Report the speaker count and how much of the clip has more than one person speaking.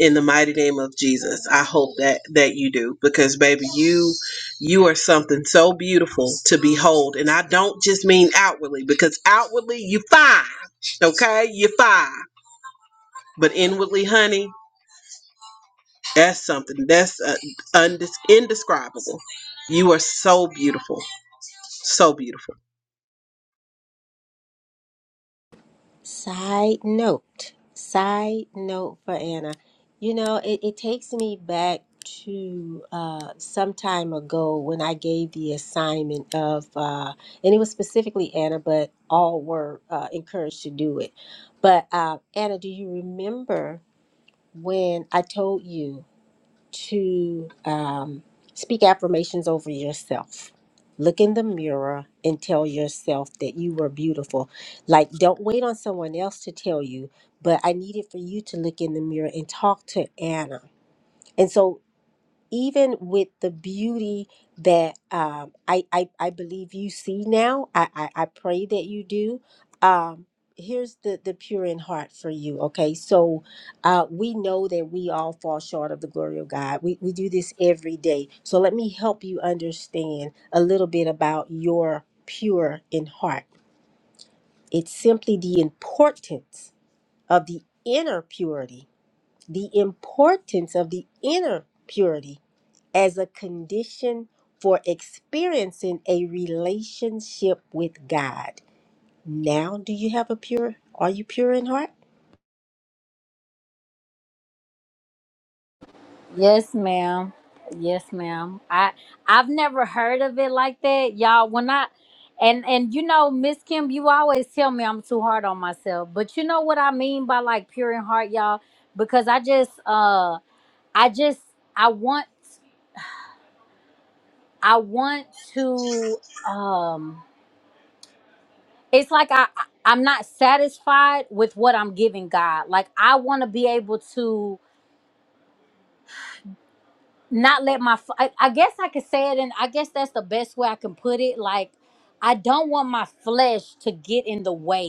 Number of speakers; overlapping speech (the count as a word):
three, no overlap